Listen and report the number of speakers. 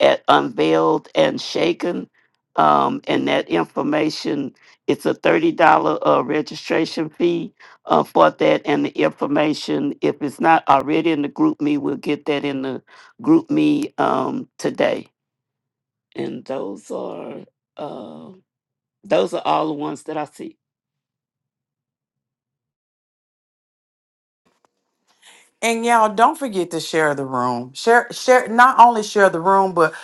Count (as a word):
two